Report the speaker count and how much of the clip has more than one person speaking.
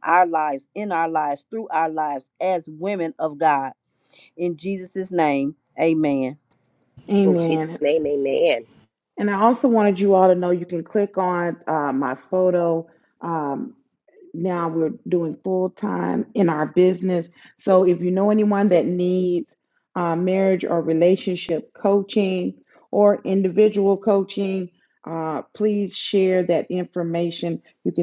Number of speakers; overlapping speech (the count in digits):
3, about 2%